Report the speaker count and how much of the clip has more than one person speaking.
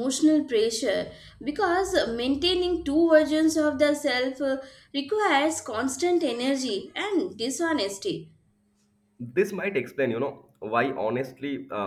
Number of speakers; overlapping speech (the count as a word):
two, no overlap